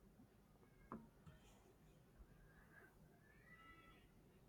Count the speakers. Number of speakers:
zero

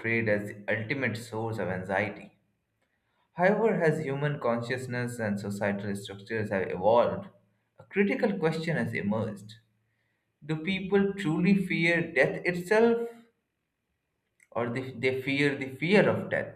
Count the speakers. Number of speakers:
one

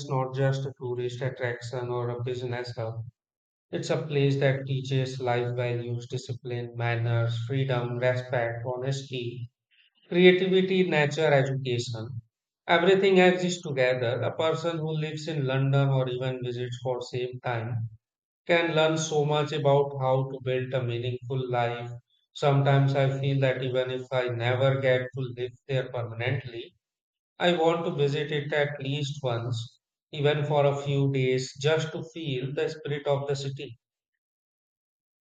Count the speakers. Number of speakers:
one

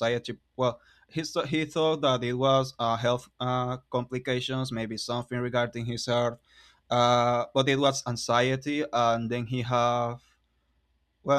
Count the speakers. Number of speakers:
one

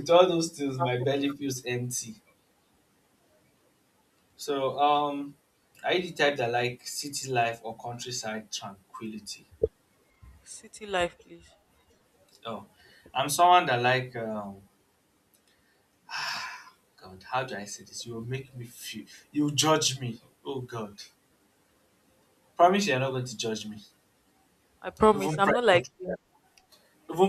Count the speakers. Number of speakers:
two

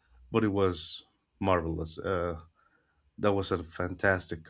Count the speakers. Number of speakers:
one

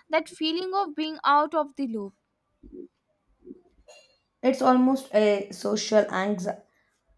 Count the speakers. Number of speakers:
two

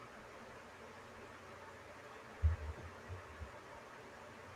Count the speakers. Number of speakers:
zero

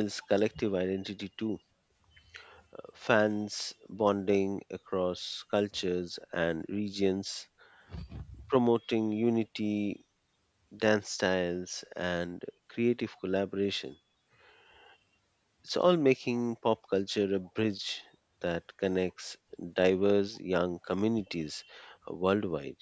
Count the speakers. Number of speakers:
one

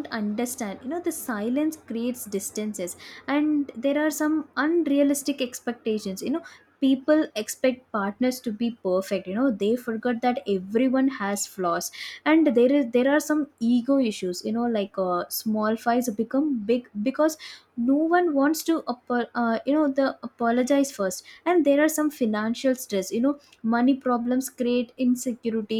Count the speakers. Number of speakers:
one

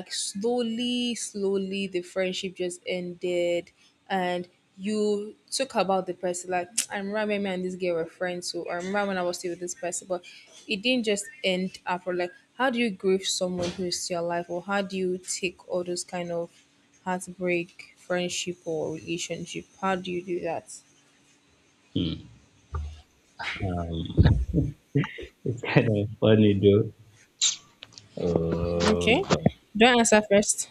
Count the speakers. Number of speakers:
two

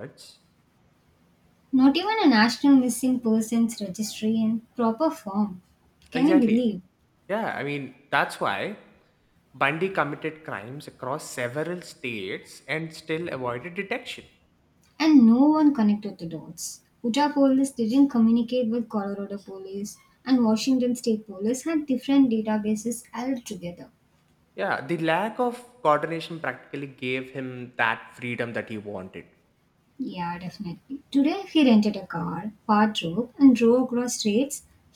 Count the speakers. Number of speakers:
two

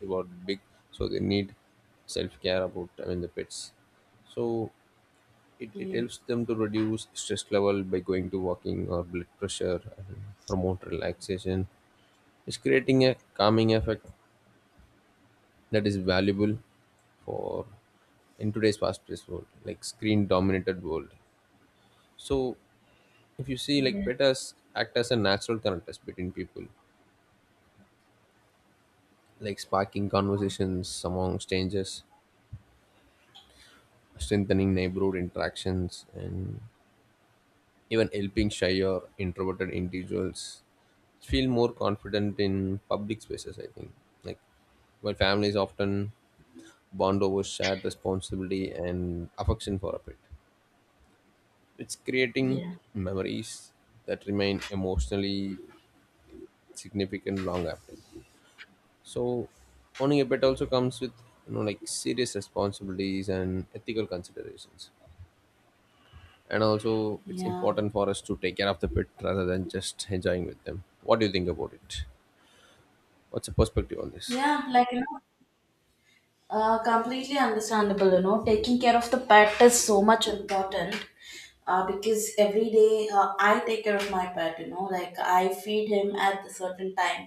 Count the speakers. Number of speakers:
two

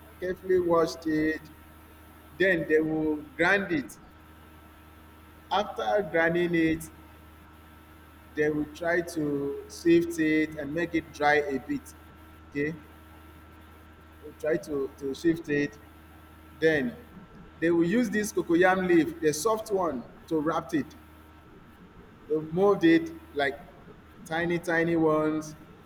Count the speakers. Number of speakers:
one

